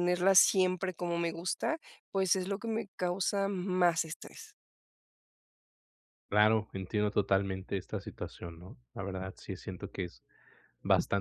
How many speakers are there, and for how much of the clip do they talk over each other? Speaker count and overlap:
2, no overlap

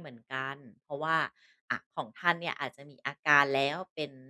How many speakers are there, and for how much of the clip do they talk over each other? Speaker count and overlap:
1, no overlap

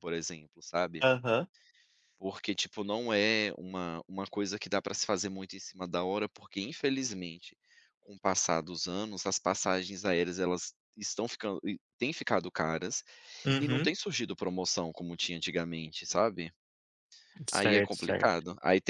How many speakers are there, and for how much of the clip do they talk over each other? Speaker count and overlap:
2, about 6%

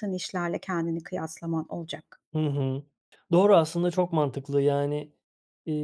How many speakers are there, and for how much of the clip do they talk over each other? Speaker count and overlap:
2, no overlap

